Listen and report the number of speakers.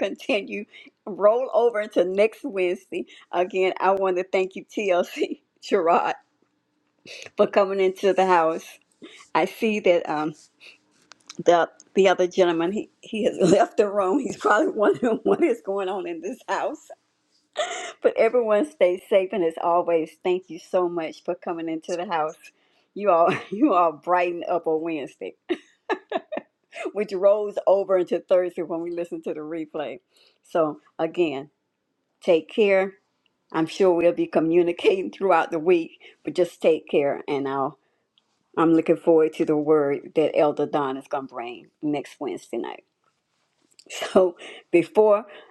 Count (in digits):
1